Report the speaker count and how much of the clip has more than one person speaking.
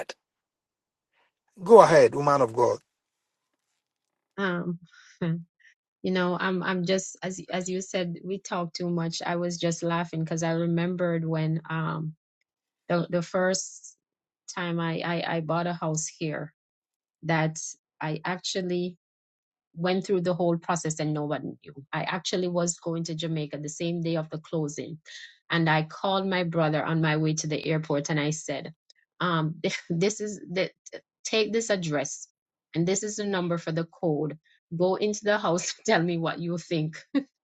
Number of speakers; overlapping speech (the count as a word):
two, no overlap